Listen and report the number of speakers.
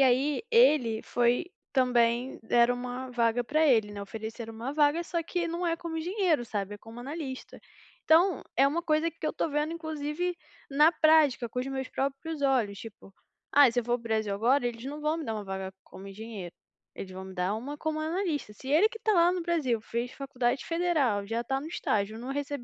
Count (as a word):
one